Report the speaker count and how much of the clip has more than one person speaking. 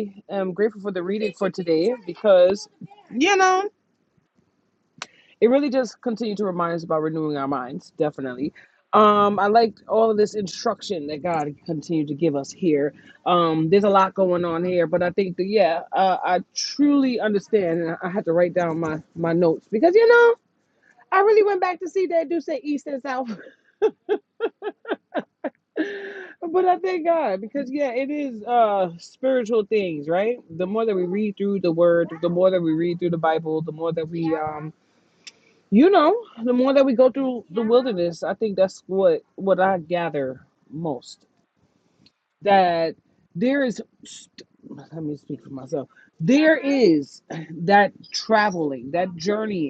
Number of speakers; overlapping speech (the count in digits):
1, no overlap